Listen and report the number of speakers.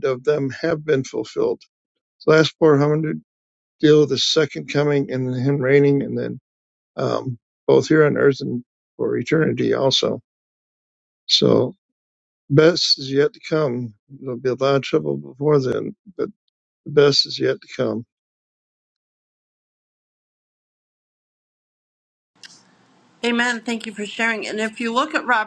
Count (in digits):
2